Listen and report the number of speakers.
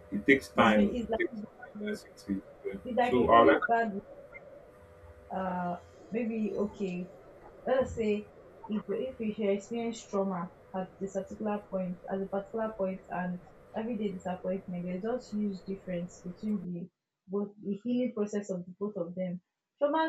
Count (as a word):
two